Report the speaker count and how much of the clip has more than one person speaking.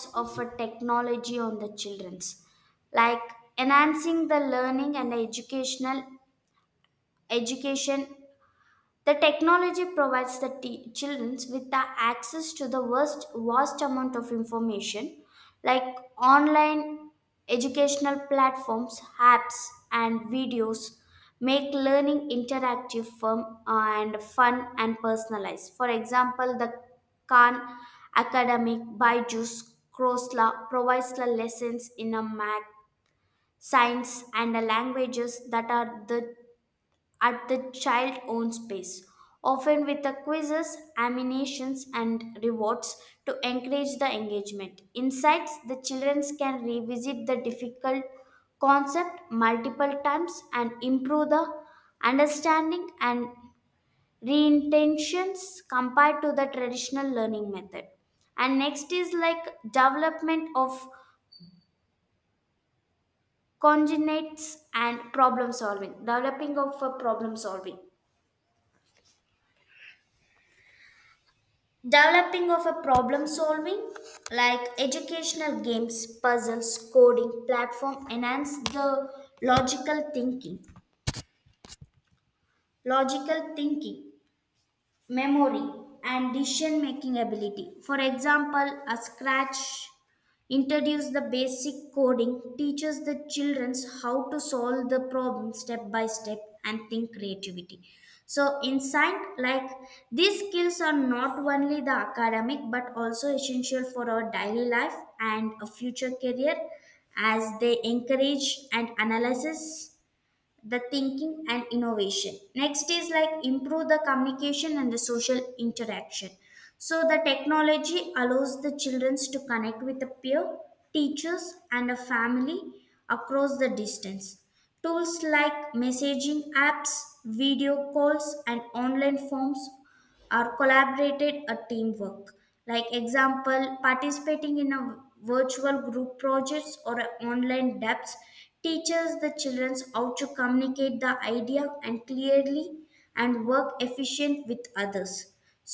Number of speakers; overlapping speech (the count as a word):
one, no overlap